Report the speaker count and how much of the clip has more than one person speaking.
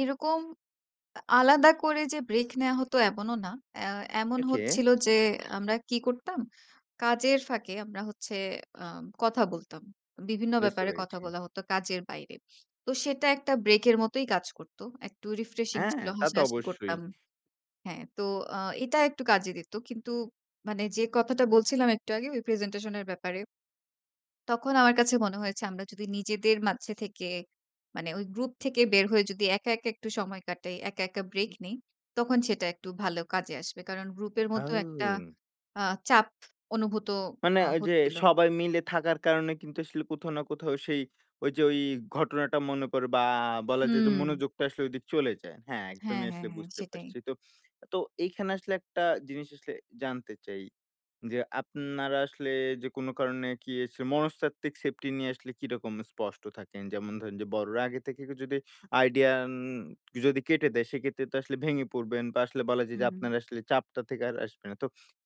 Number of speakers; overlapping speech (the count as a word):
two, about 8%